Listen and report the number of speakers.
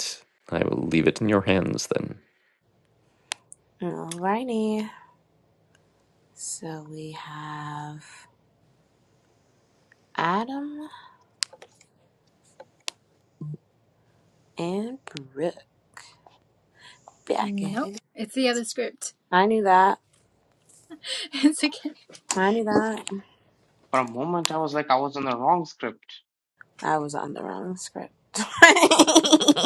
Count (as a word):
four